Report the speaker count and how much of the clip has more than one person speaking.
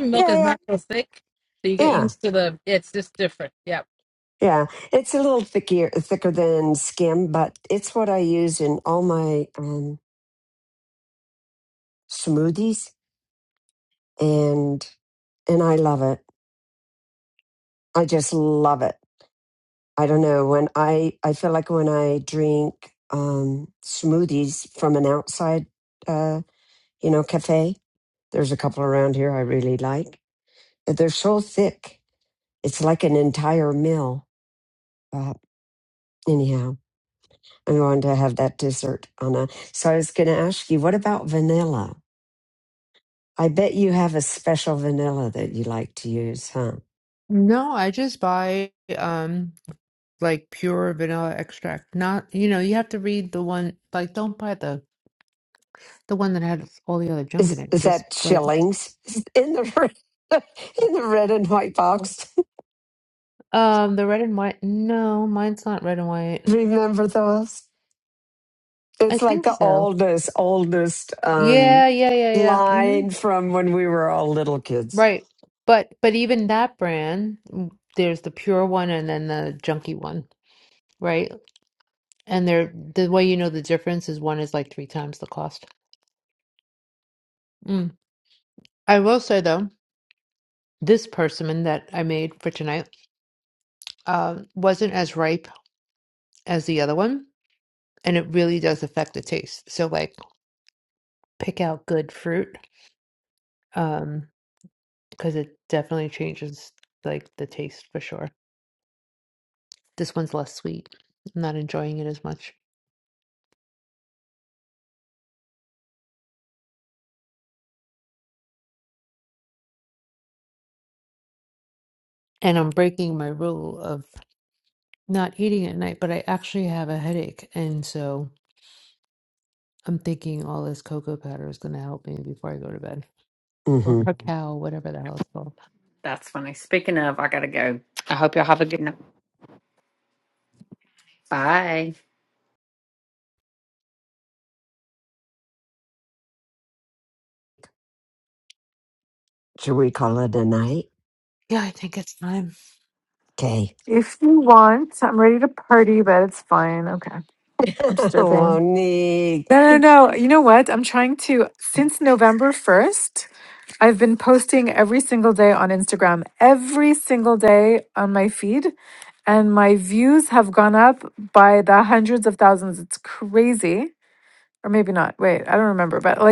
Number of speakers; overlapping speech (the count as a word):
five, about 3%